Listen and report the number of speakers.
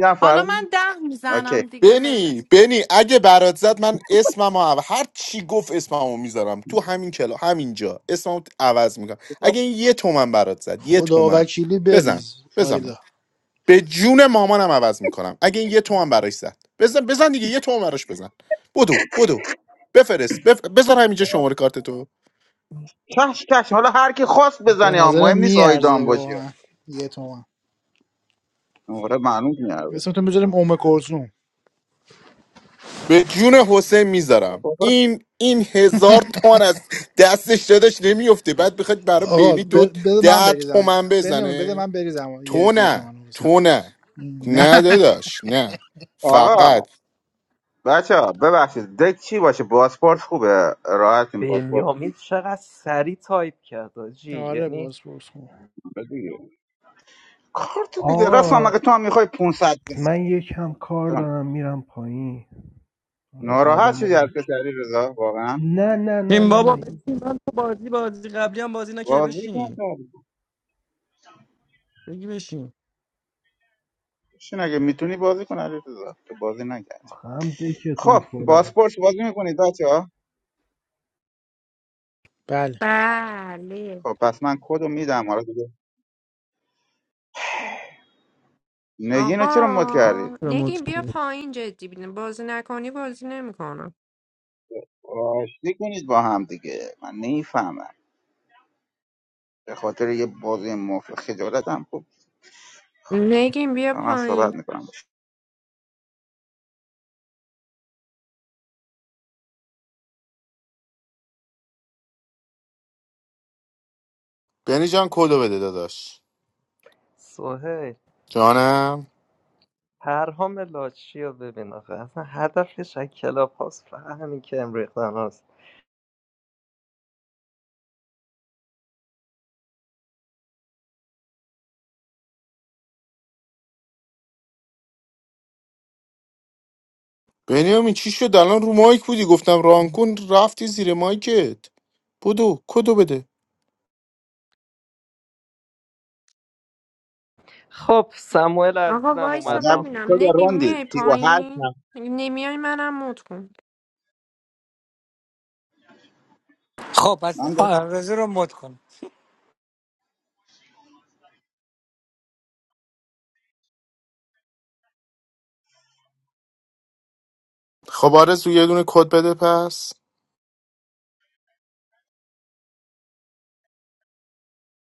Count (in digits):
9